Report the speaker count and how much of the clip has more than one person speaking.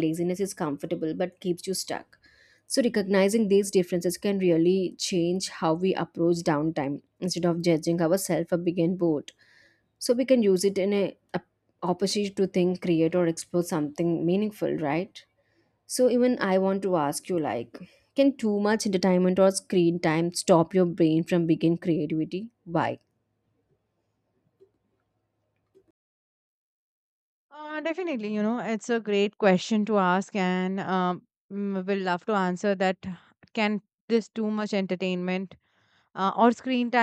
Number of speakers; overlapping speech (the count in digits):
2, no overlap